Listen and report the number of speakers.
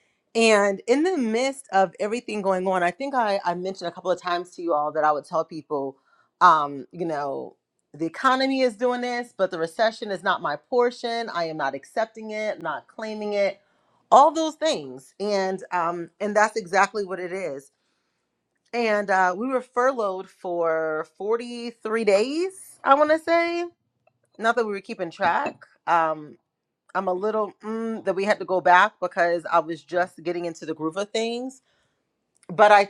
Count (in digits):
1